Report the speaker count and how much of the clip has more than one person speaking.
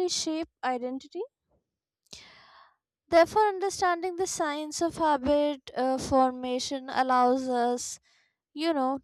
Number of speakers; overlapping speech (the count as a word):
one, no overlap